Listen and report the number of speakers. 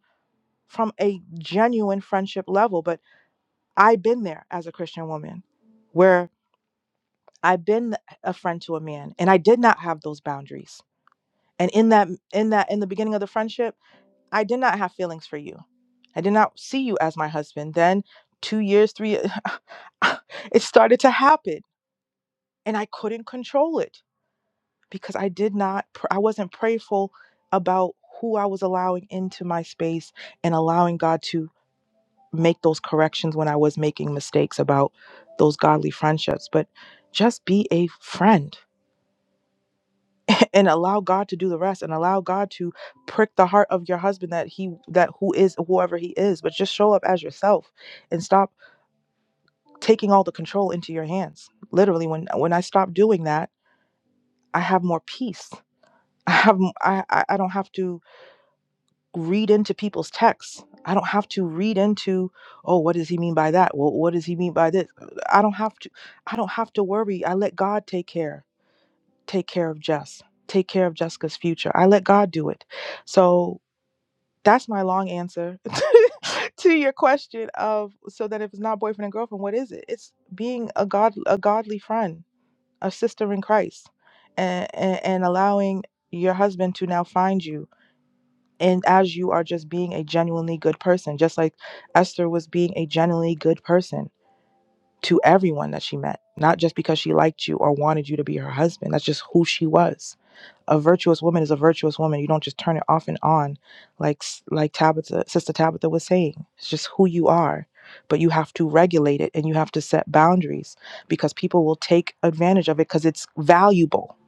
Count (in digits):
1